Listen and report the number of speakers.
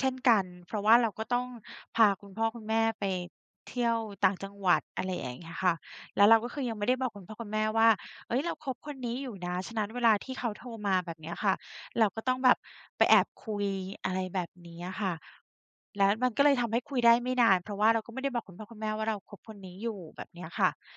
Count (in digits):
1